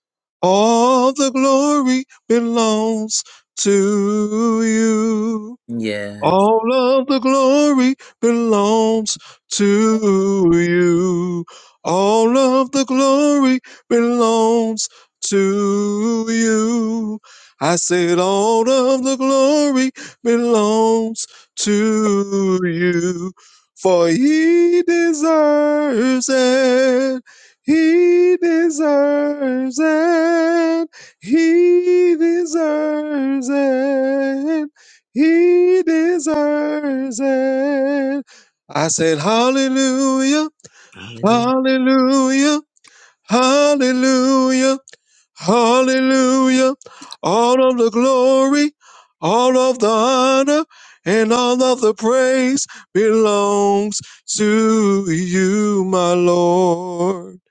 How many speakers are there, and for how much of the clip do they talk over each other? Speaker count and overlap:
two, about 1%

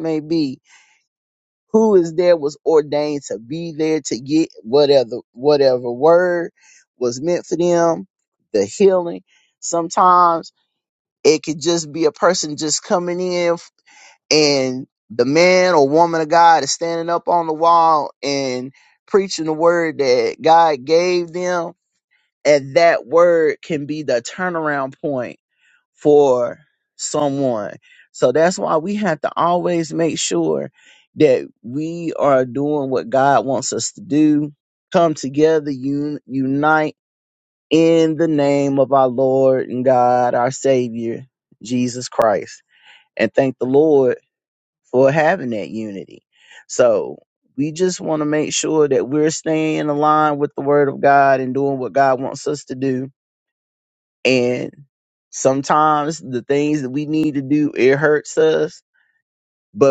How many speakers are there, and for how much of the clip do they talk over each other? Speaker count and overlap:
one, no overlap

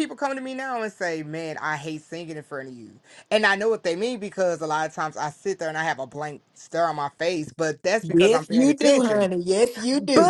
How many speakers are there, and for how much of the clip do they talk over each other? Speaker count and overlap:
two, about 12%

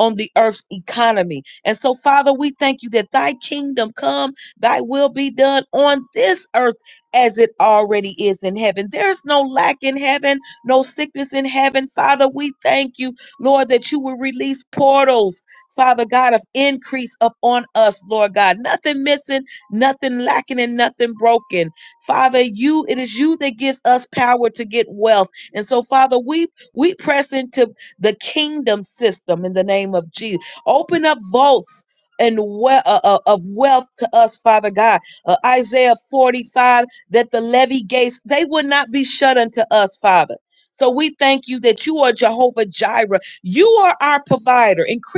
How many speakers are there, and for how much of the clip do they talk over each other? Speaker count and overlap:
one, no overlap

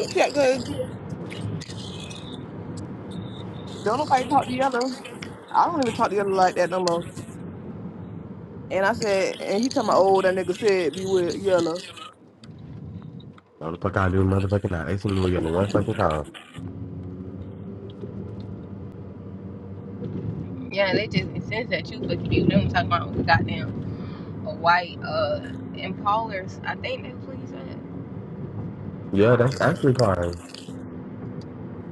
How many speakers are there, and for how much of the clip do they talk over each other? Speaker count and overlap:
three, no overlap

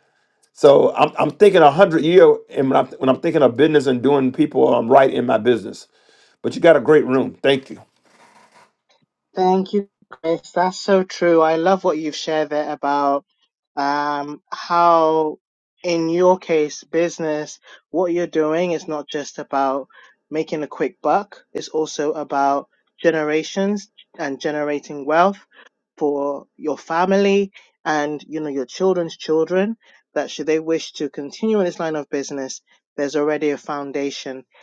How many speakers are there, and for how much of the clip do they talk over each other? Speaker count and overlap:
two, no overlap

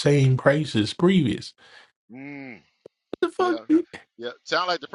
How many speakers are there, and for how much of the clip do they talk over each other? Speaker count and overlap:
two, about 5%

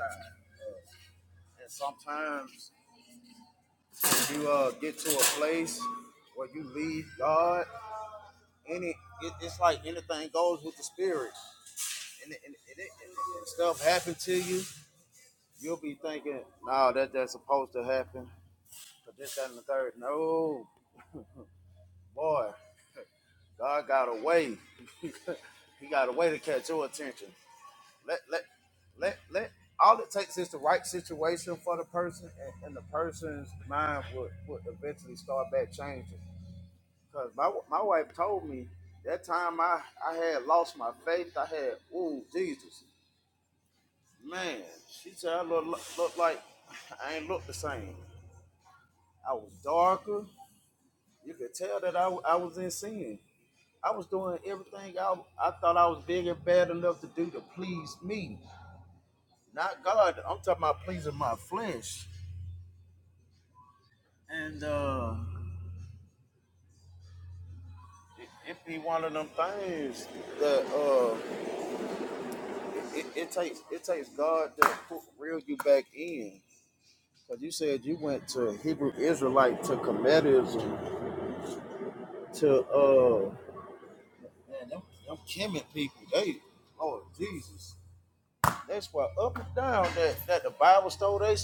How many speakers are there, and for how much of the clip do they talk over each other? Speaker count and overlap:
one, no overlap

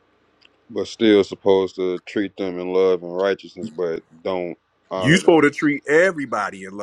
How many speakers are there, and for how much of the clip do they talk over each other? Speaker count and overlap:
two, about 6%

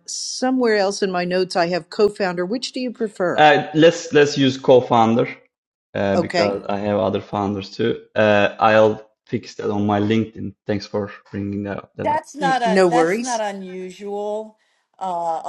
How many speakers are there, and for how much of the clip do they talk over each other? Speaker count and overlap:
three, about 10%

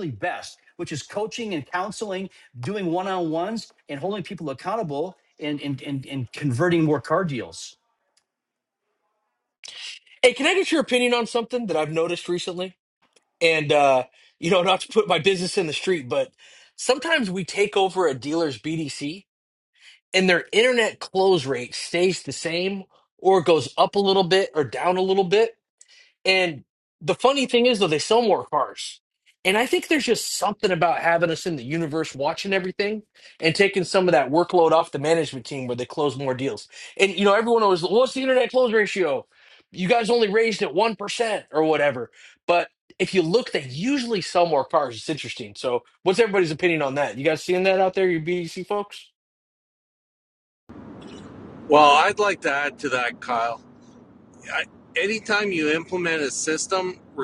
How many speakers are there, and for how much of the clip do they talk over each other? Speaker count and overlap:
three, no overlap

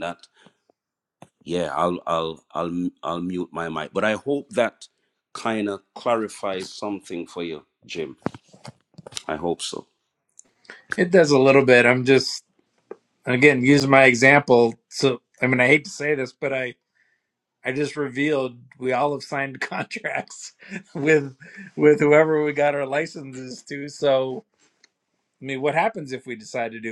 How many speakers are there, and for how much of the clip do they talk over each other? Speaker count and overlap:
two, no overlap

